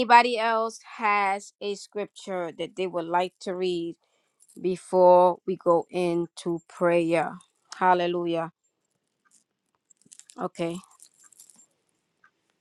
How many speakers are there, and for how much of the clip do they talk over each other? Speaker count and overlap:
one, no overlap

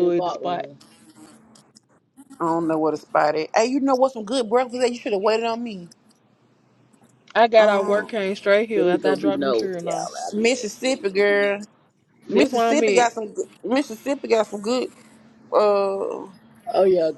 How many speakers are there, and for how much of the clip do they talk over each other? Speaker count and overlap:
three, about 21%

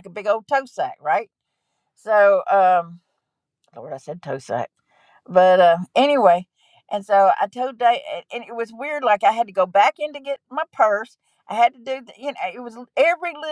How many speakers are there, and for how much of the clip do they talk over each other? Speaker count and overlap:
one, no overlap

